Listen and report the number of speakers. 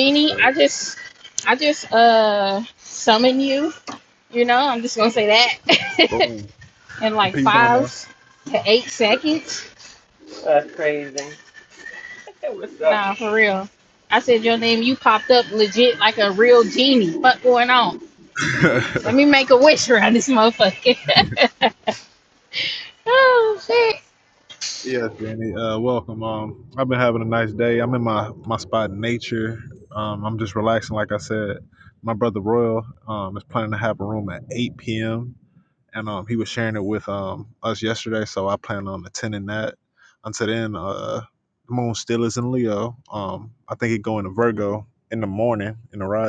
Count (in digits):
3